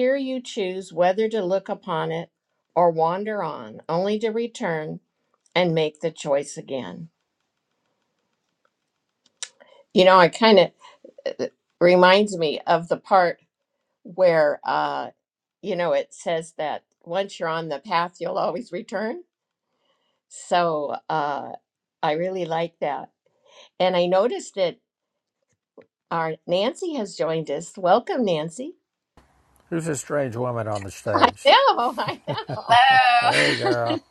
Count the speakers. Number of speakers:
three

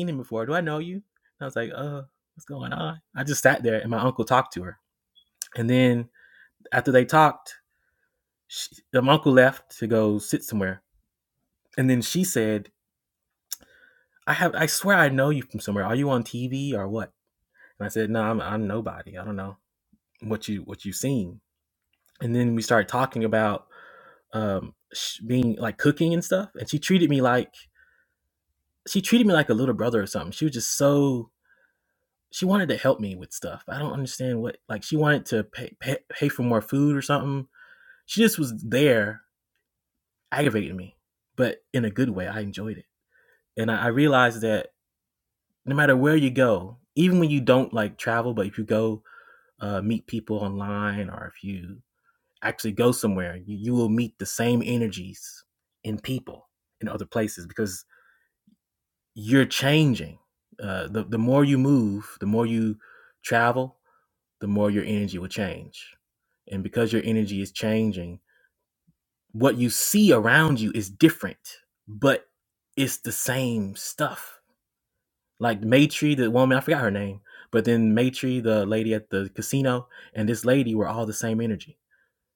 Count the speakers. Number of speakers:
one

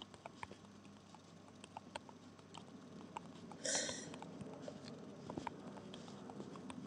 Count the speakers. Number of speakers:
zero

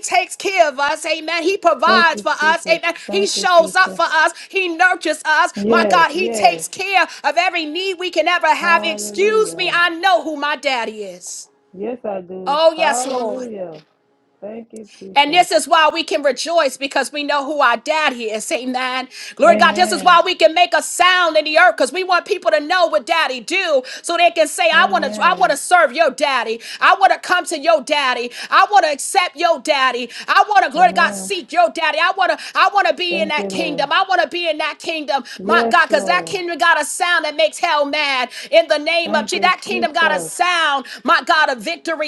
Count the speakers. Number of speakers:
two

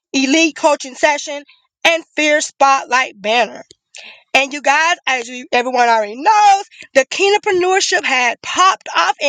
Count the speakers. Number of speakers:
one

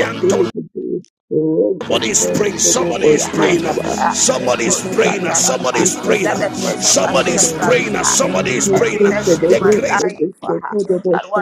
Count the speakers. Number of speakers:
three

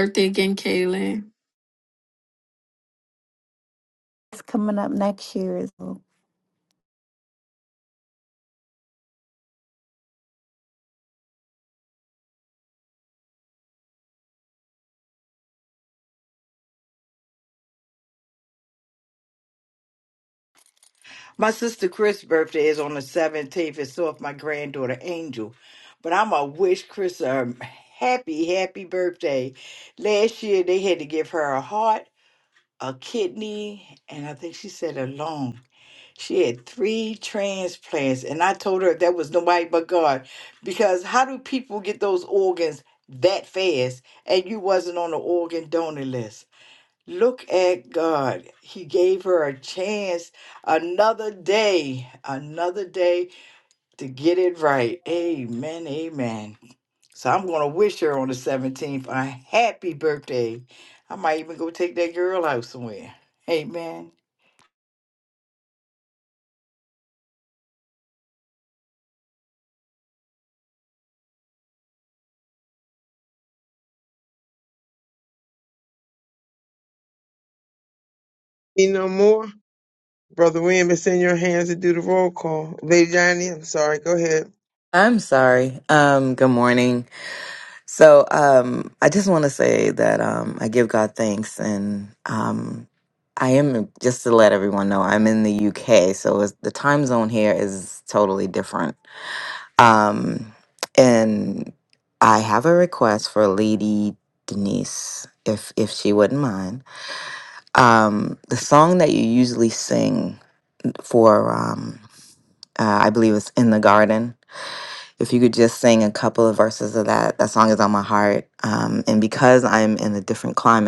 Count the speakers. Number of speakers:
five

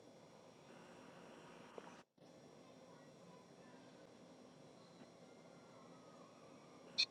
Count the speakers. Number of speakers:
zero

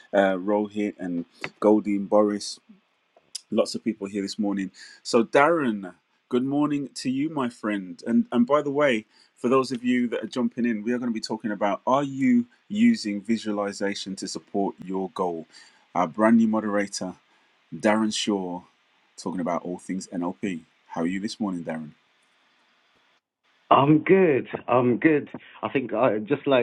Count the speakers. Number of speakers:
two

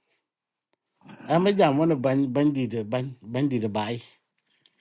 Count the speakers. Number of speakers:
one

